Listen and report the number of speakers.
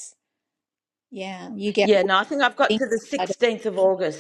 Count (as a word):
two